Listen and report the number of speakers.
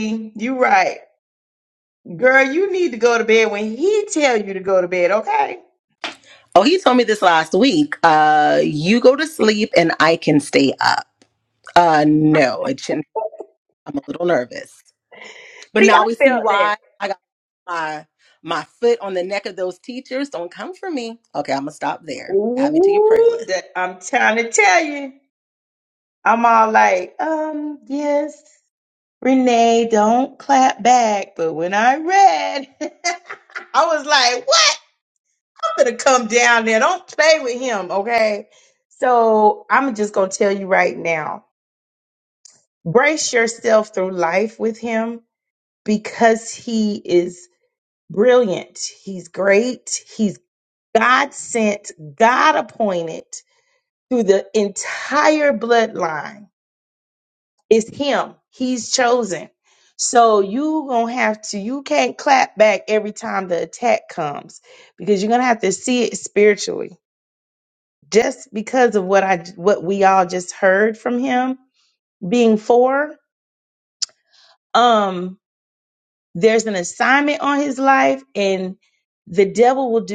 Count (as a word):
two